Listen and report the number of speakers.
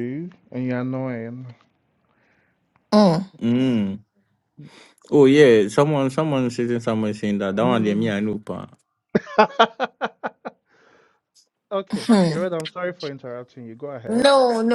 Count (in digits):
3